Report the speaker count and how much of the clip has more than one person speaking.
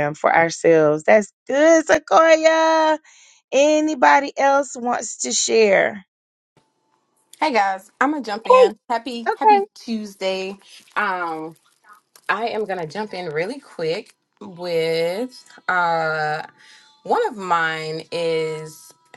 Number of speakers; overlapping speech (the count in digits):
2, about 3%